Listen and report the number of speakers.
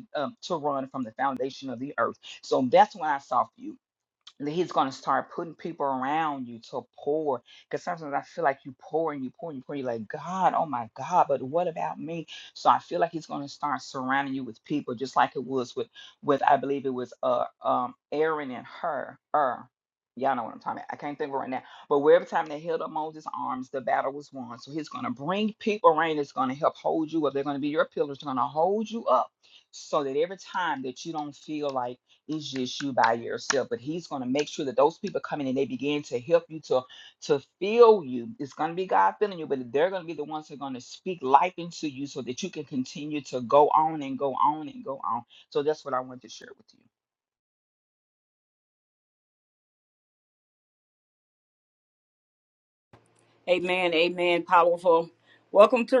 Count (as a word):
two